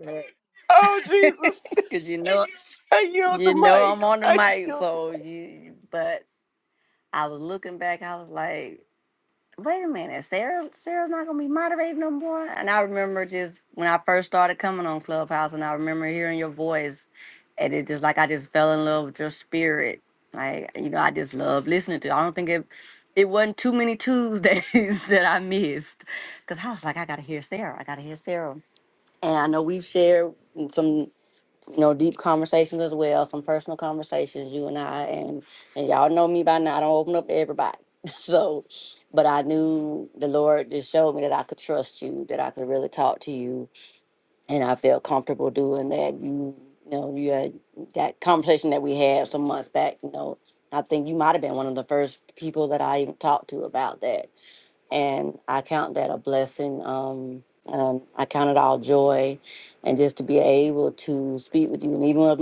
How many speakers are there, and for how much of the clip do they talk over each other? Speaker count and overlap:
2, about 2%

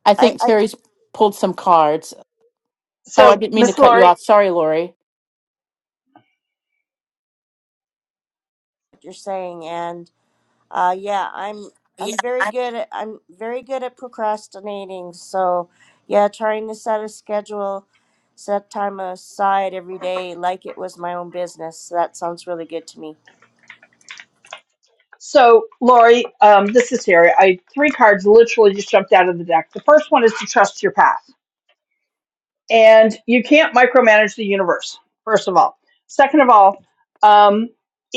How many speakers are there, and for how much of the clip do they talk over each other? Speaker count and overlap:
3, about 5%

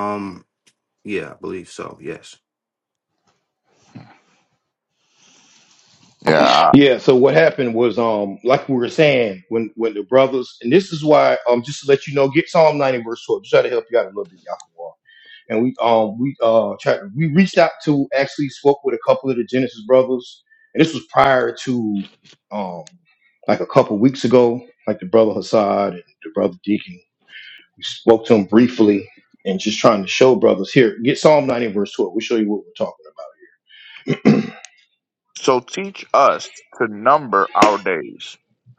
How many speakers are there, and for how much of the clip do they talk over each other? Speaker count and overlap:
3, no overlap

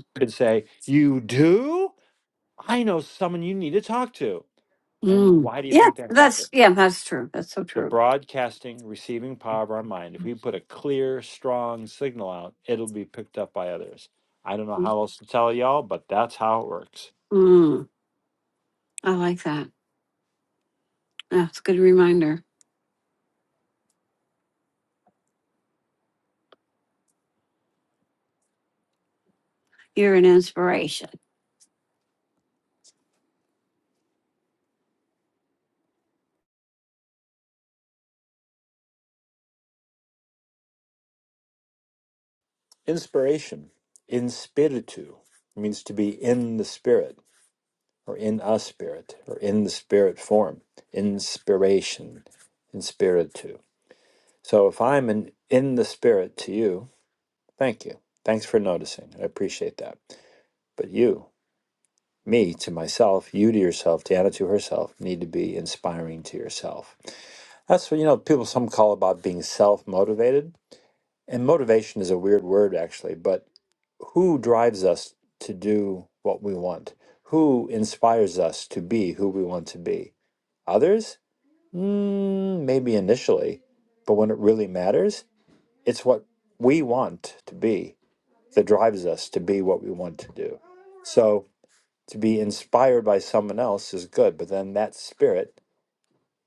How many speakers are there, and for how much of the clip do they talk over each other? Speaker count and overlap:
2, about 2%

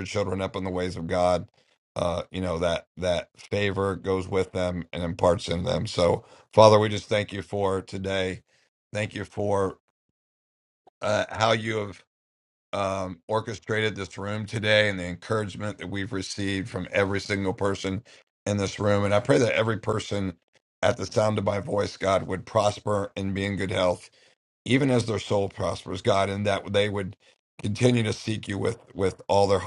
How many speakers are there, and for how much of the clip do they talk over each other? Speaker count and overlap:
1, no overlap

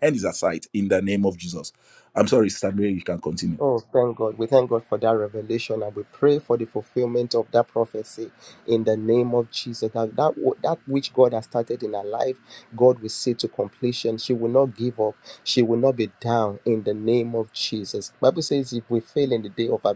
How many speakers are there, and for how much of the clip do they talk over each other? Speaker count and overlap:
2, no overlap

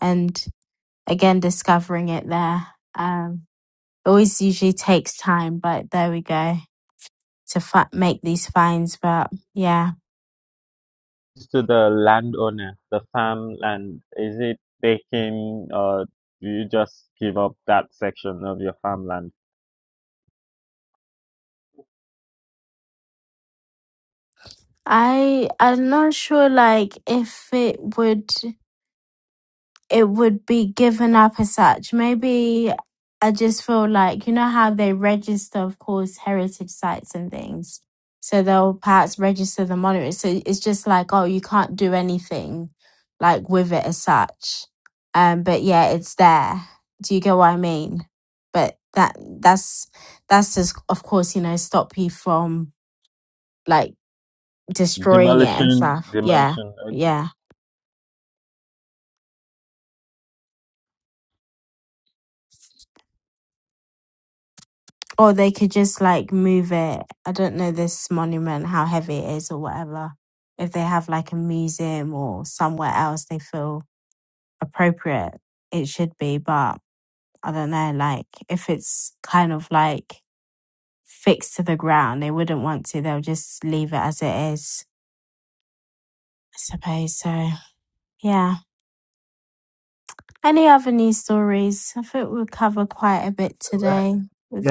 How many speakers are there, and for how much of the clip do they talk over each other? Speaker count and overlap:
2, about 1%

